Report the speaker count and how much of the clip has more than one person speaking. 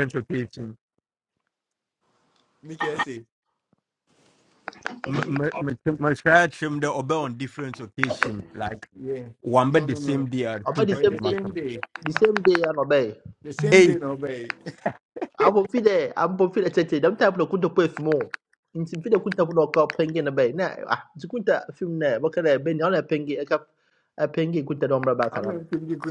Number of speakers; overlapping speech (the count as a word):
three, about 8%